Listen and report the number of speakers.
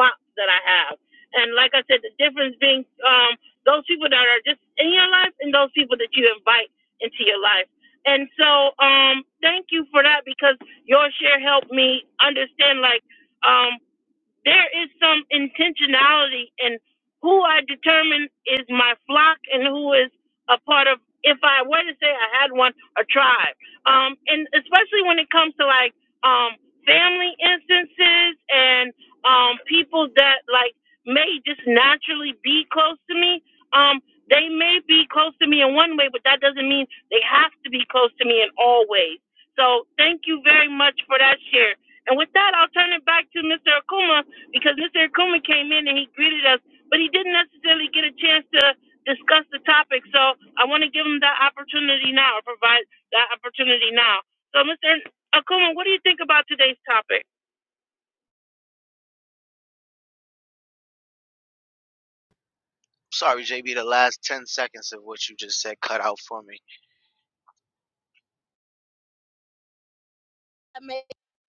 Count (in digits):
2